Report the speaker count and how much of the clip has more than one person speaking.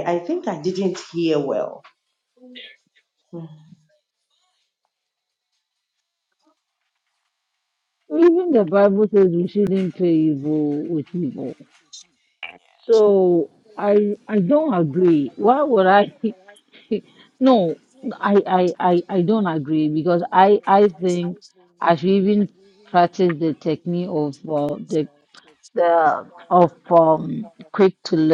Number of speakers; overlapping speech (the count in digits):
2, no overlap